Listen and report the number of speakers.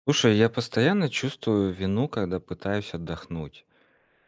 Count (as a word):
one